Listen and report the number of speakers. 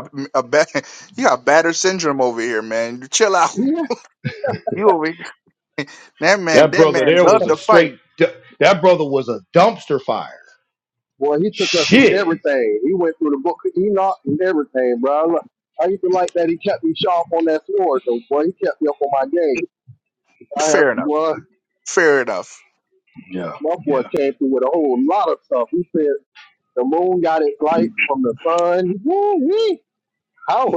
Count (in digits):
3